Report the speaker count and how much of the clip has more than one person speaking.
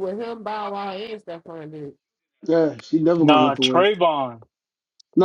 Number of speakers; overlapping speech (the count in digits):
3, about 12%